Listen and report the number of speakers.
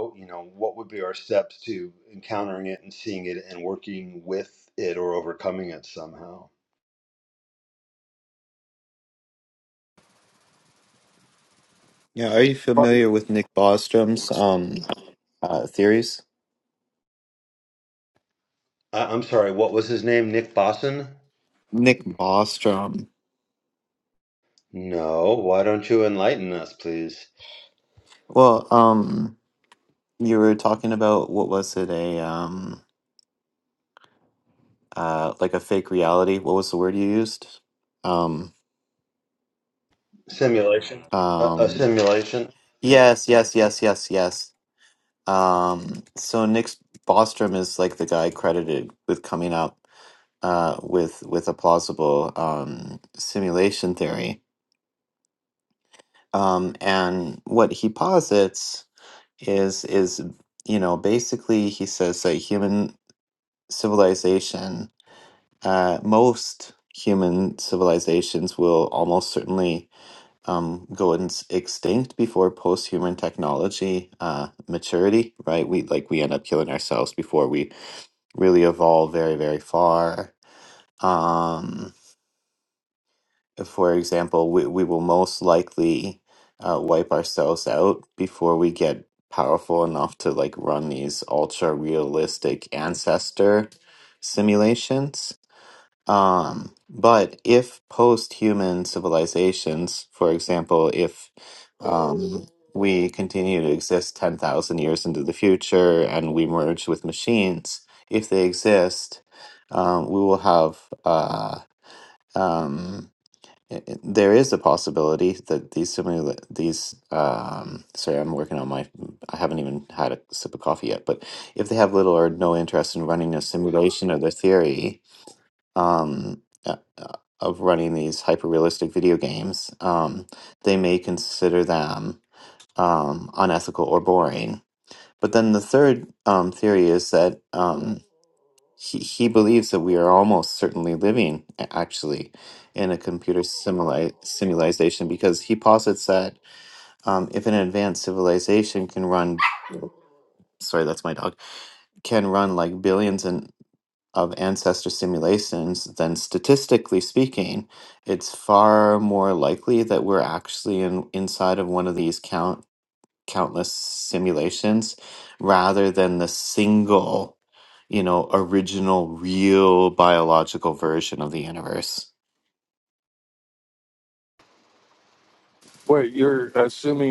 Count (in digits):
3